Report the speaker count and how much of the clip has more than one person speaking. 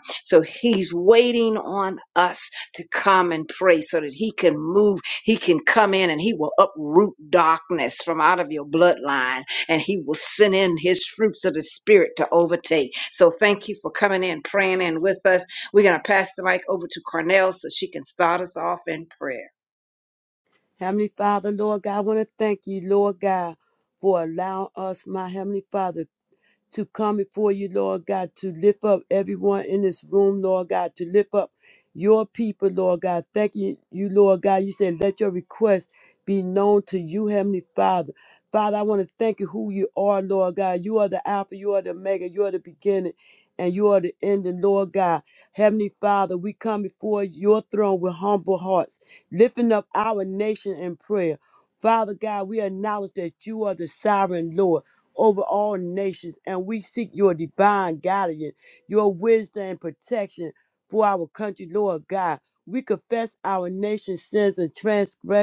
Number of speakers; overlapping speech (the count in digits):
2, no overlap